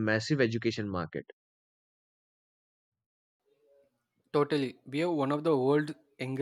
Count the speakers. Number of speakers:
2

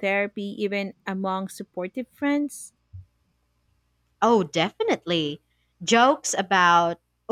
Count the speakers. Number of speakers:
2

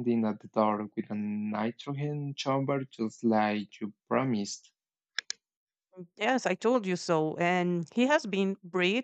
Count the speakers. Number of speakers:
2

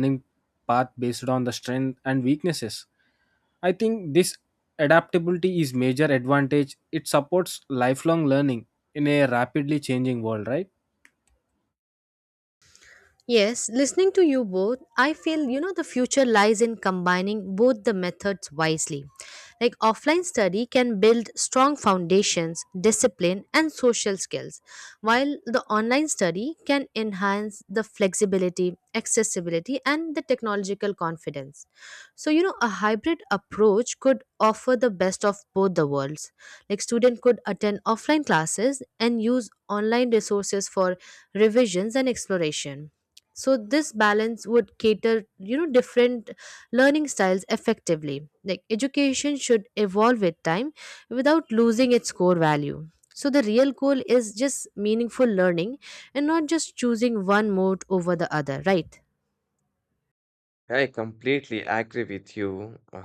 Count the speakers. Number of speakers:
3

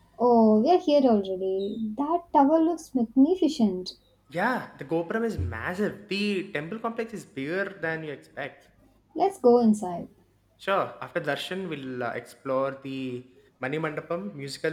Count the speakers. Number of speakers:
2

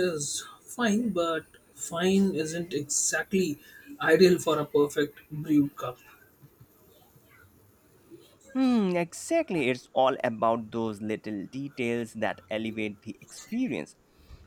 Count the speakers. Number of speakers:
2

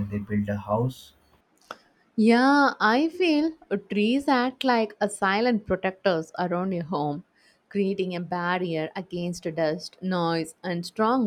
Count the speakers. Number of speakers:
2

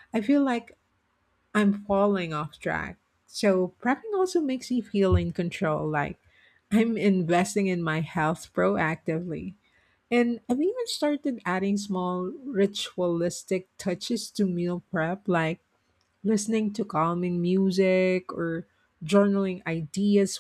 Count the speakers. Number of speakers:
1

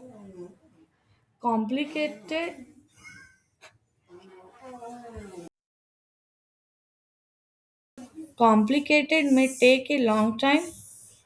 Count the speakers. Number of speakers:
1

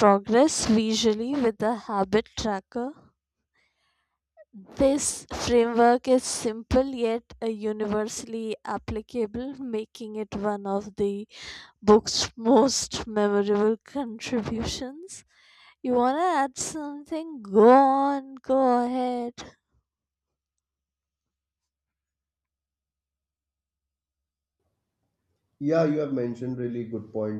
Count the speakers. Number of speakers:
2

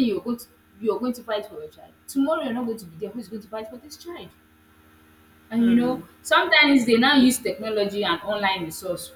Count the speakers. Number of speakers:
1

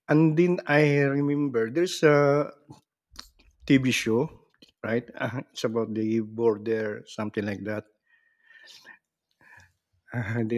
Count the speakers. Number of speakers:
1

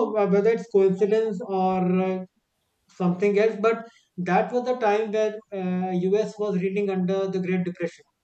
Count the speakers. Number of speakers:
1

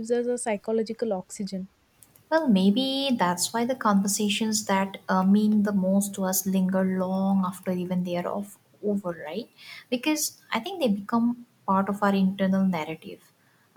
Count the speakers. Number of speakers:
2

